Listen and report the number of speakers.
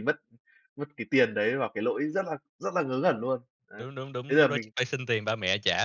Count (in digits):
2